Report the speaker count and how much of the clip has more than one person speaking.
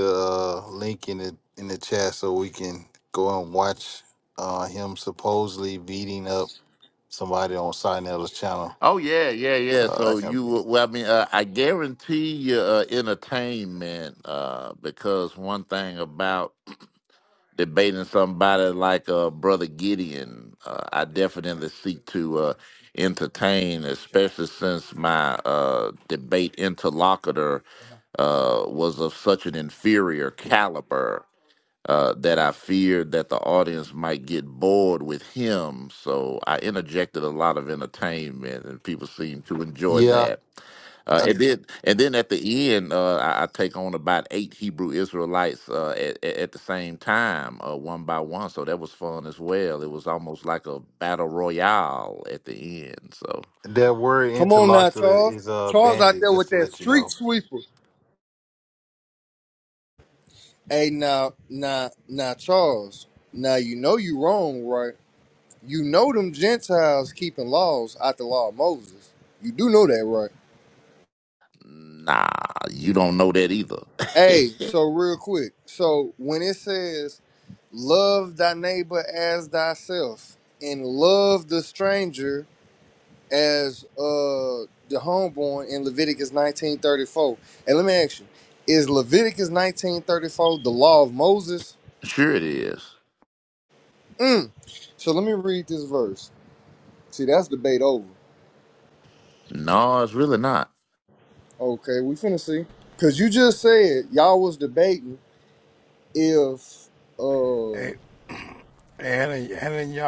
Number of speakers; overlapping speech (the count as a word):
four, about 3%